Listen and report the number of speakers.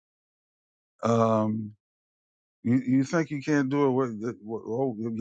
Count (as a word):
one